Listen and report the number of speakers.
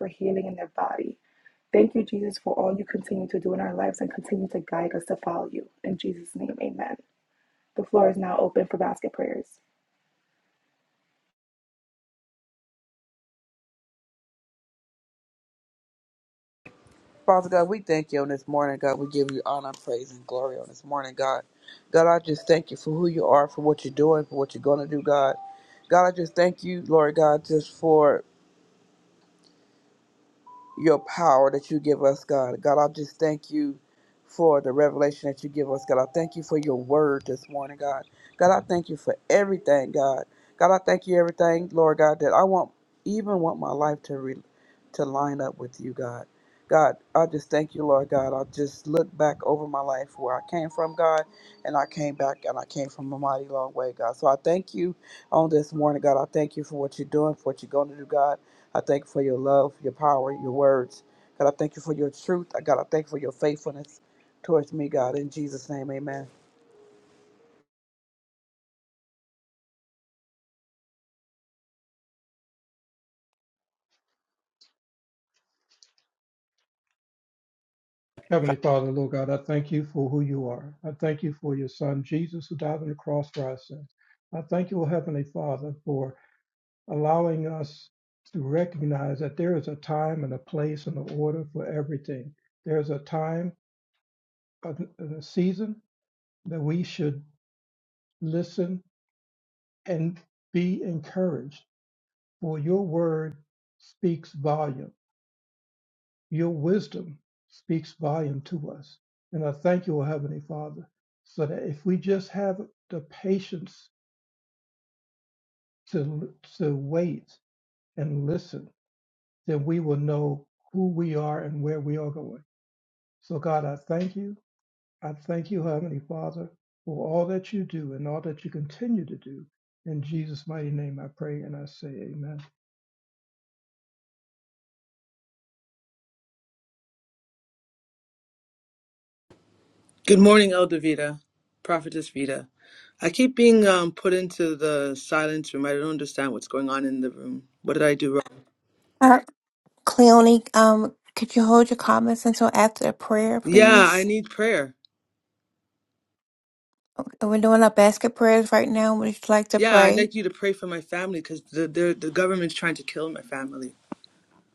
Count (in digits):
5